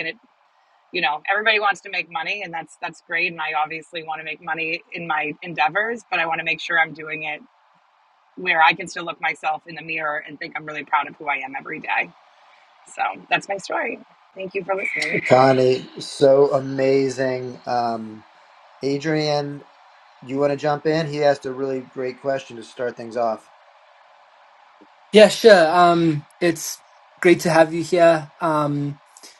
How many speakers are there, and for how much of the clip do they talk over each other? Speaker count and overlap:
three, no overlap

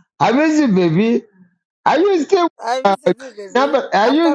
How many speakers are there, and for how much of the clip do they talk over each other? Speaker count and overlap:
two, about 22%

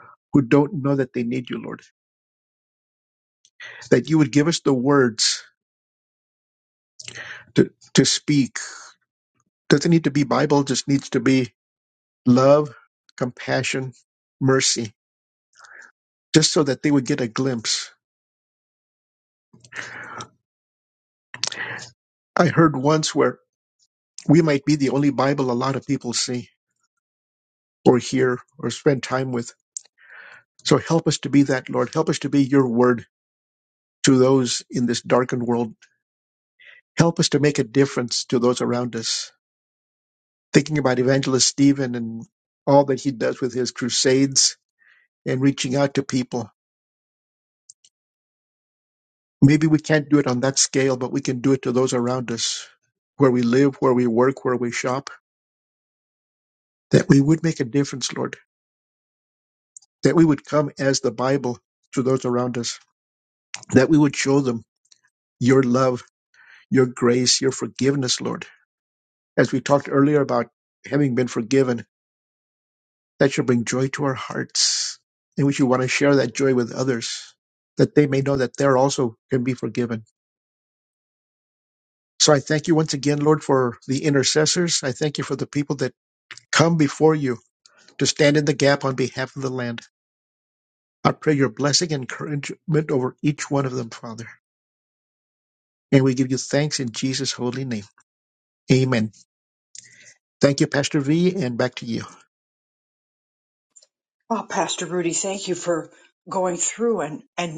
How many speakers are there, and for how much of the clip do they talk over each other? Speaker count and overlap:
two, no overlap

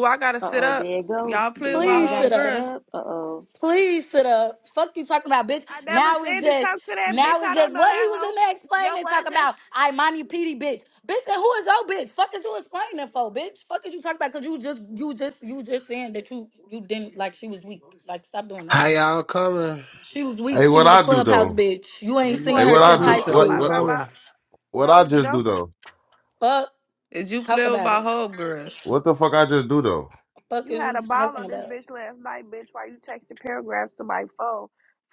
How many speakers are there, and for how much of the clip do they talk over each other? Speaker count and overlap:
six, about 29%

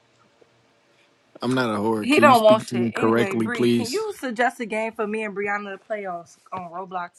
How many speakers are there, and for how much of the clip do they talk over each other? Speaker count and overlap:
two, about 25%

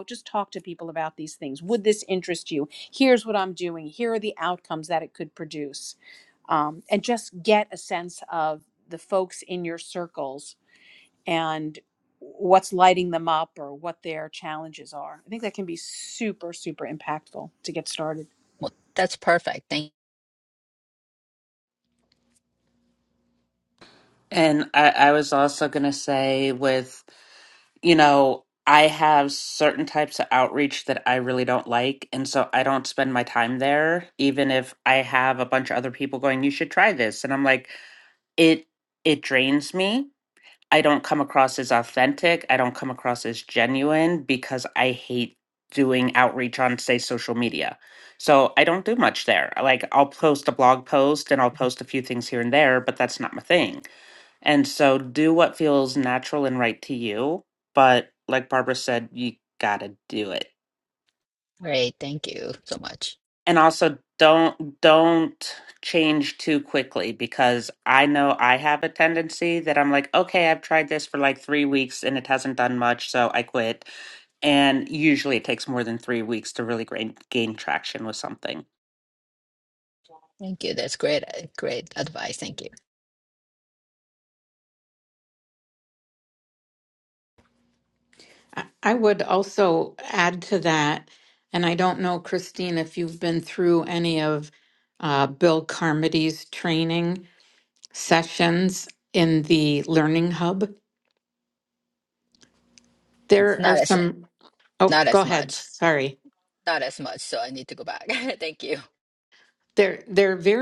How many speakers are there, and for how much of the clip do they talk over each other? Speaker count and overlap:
four, about 1%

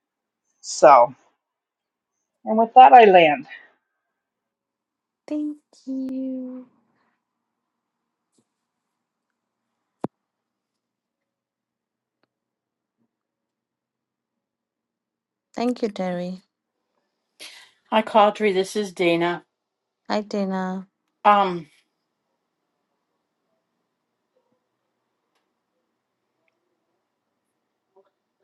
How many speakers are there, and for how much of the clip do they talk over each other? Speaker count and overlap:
three, no overlap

